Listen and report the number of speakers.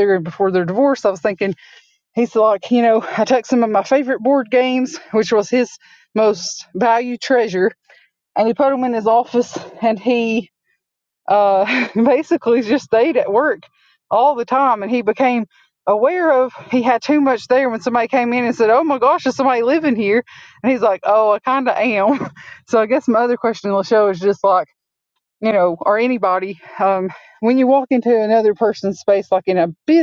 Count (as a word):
one